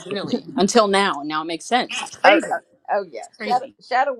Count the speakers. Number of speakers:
two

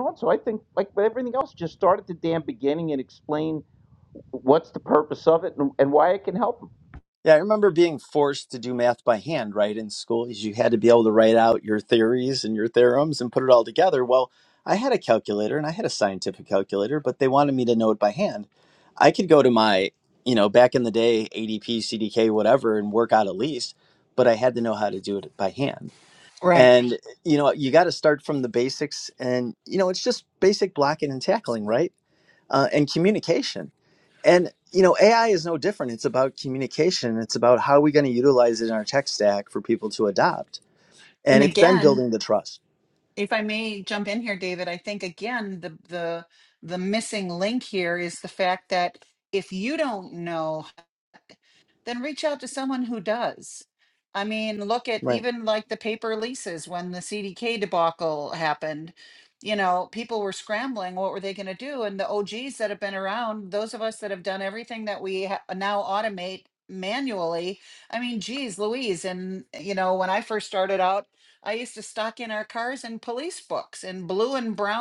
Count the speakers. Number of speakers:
three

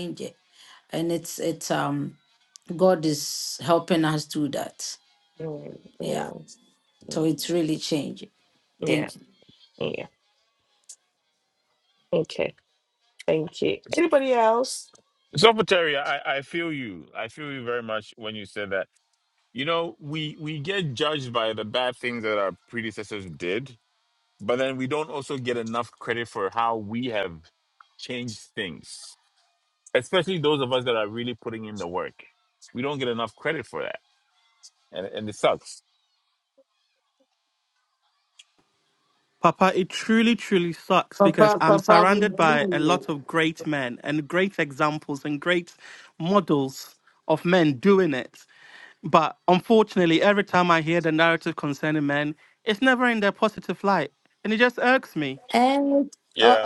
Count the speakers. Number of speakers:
four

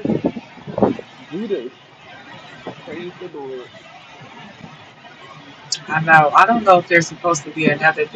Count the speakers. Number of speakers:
two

